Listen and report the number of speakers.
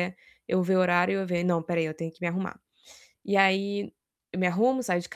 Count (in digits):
1